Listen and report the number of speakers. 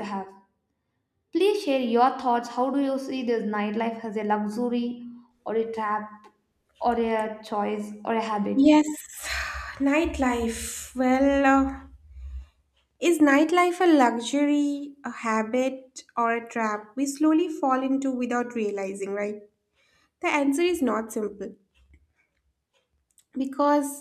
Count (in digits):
2